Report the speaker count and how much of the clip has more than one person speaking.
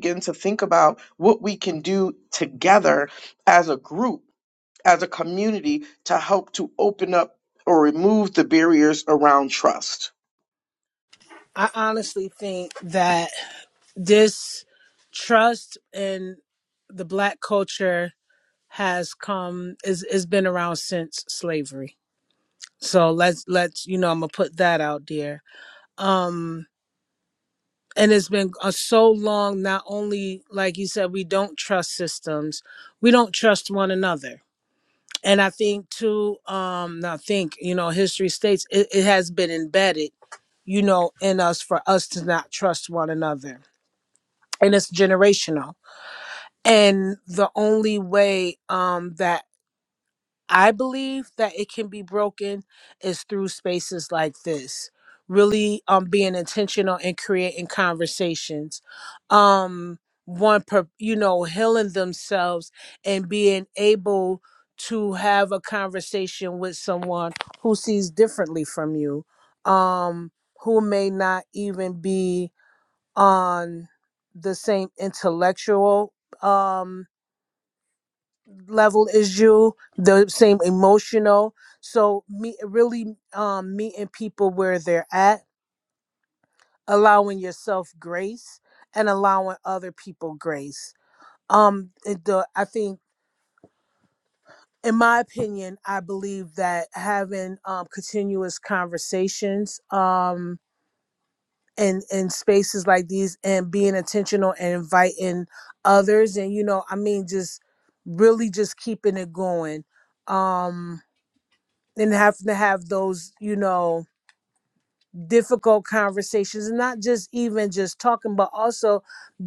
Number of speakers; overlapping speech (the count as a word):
two, no overlap